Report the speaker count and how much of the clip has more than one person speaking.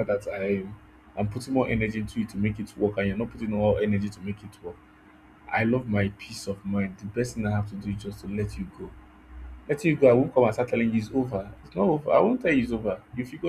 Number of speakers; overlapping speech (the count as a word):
one, no overlap